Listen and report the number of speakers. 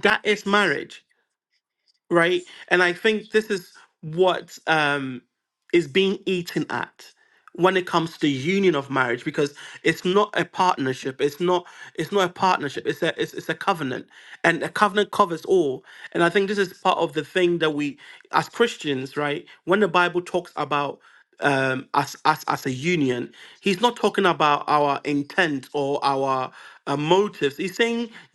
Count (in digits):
1